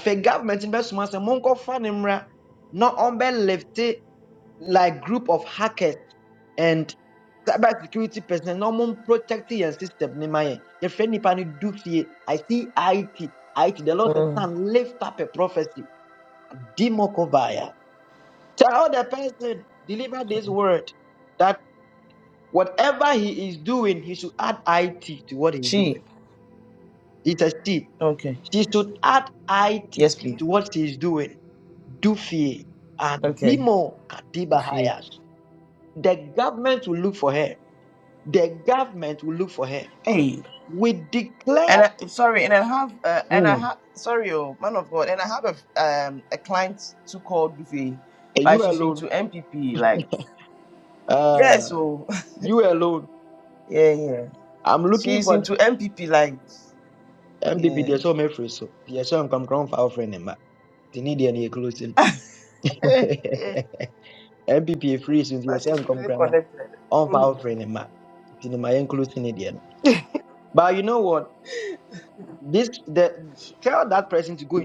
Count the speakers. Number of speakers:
2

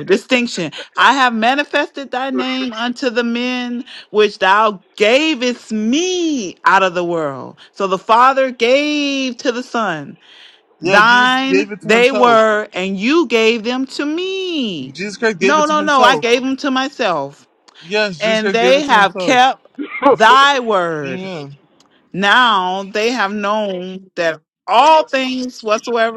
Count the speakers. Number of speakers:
2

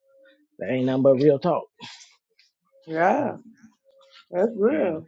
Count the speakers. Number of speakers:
2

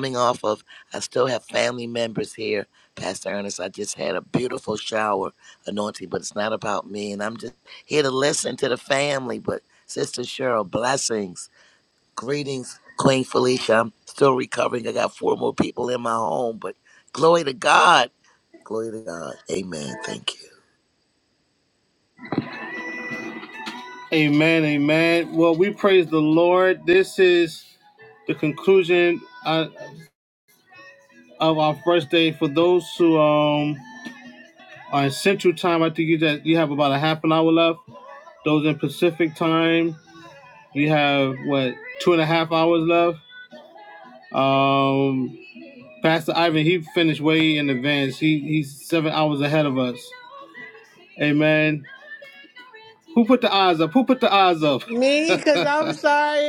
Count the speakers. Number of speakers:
3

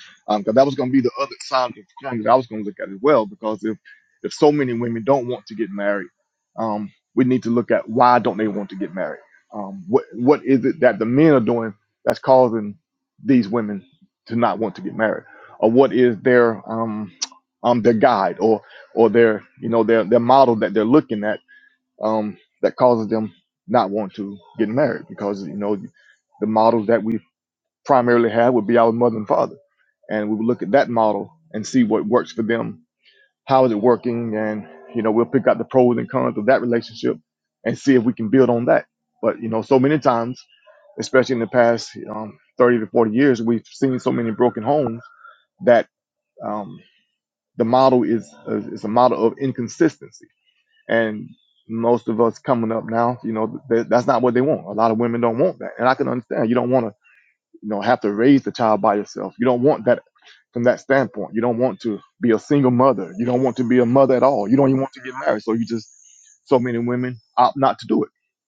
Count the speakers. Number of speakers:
1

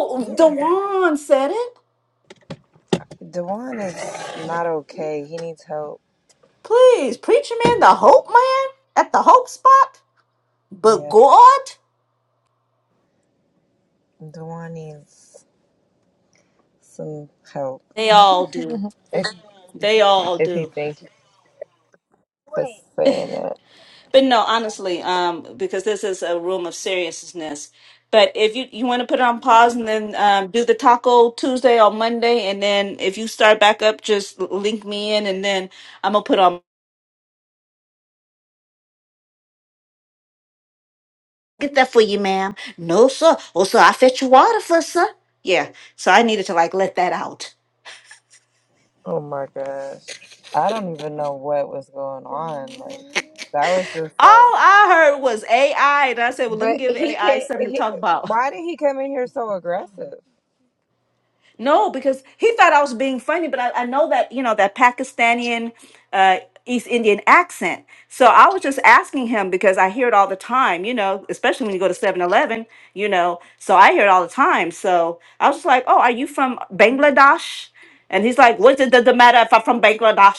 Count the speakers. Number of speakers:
2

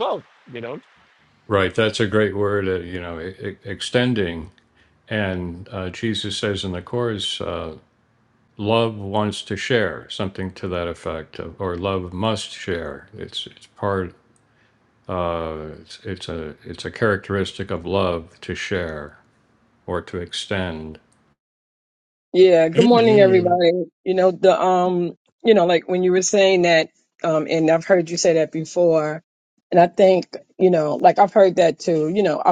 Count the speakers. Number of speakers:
3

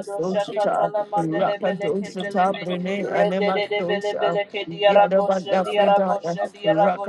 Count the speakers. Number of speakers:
2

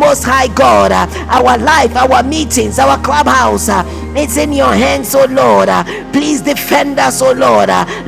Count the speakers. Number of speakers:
1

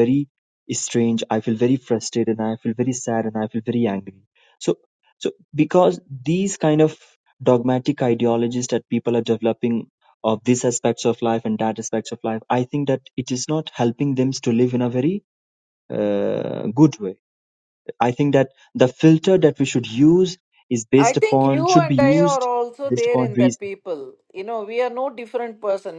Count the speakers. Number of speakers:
2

